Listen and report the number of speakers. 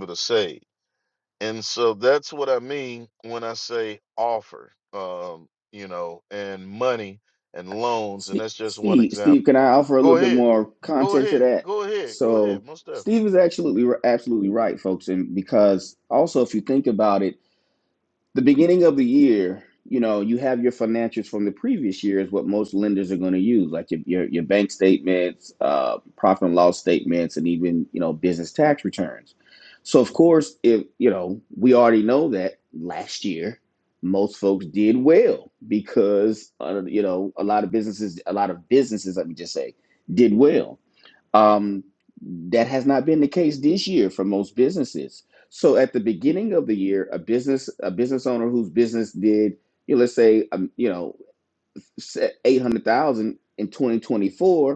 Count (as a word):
two